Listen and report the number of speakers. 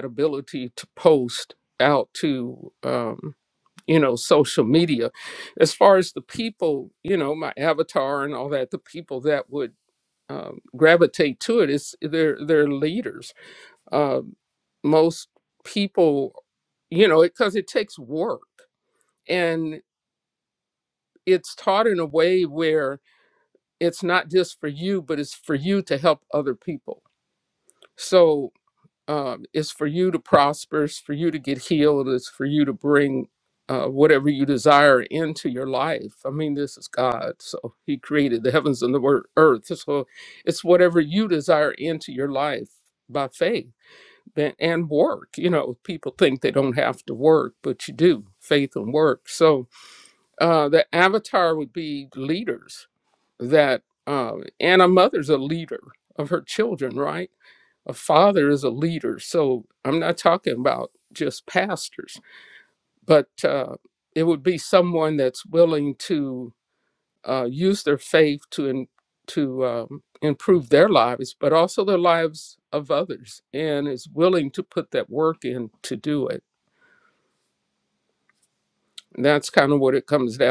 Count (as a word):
one